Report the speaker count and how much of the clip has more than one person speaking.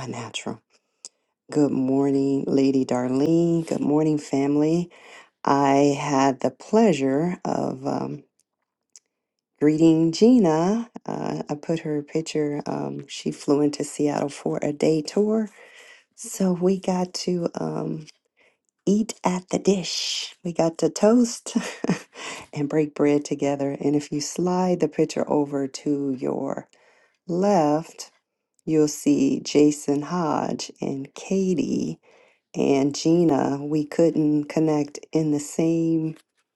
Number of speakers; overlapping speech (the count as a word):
one, no overlap